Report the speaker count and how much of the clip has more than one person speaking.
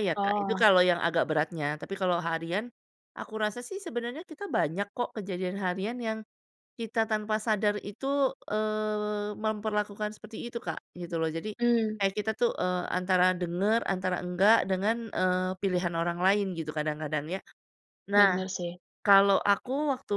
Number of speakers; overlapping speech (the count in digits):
2, about 4%